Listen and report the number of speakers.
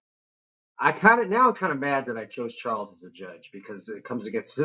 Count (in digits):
1